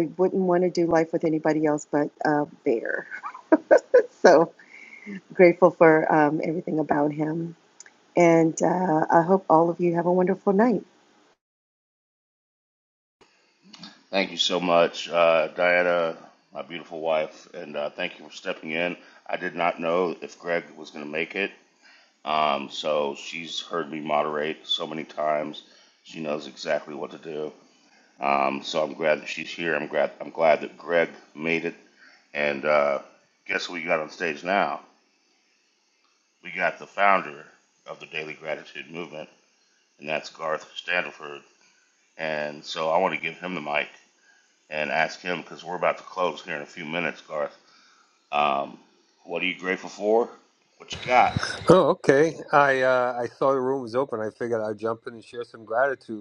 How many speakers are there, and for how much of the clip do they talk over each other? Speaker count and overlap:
three, no overlap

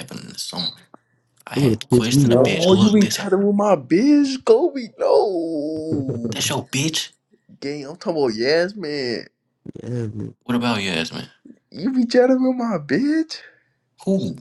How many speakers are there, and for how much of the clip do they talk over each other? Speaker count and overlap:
three, about 12%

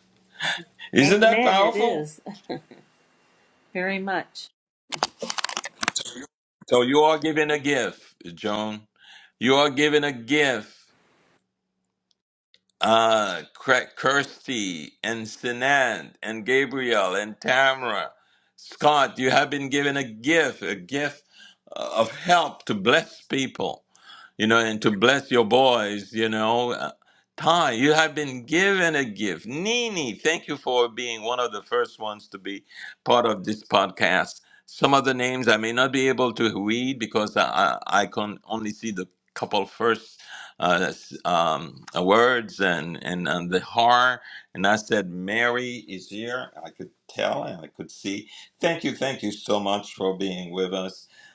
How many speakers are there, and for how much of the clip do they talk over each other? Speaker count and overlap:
two, about 2%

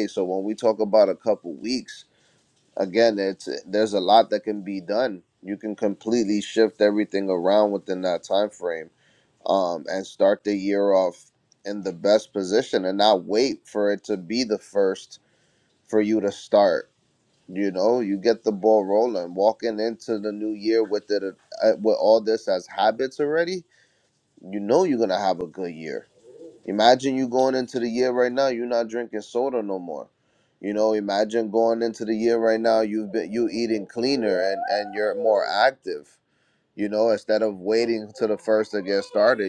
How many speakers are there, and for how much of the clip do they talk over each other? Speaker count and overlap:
one, no overlap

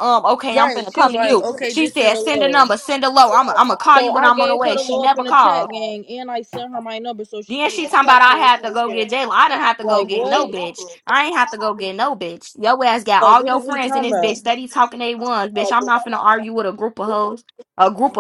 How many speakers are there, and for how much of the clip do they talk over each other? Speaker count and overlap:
two, about 40%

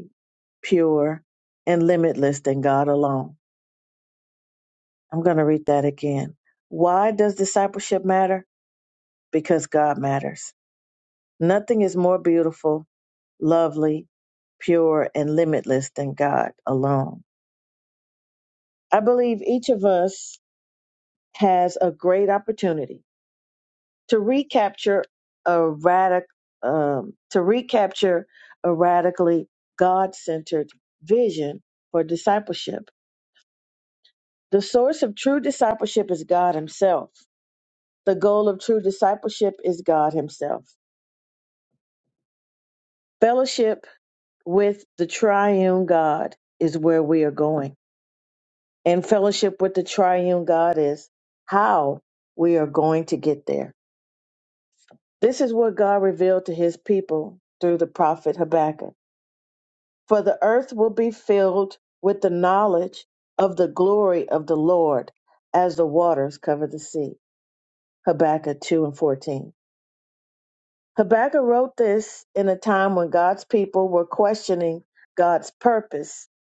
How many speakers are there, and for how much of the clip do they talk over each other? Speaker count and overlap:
one, no overlap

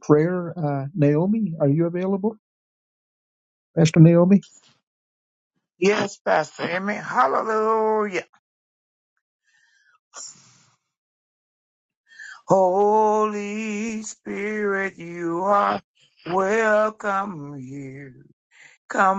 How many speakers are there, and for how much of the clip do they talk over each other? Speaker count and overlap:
two, no overlap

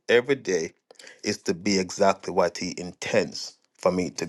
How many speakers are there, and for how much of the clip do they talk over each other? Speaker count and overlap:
one, no overlap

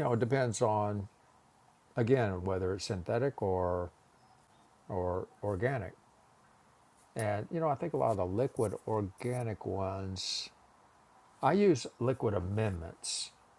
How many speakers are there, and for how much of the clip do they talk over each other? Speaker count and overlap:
one, no overlap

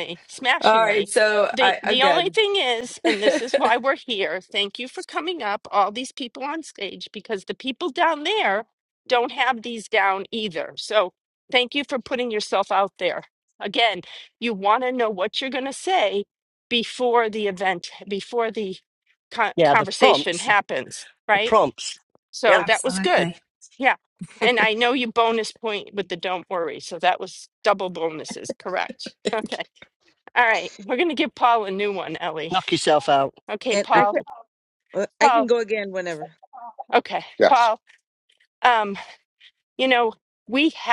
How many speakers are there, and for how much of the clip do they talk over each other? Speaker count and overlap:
four, about 10%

